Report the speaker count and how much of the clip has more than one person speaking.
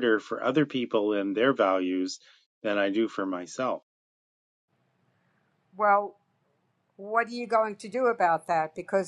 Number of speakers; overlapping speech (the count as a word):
two, no overlap